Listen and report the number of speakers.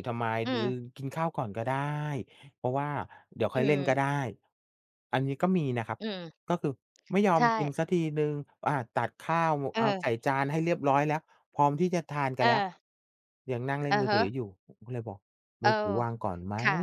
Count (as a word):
two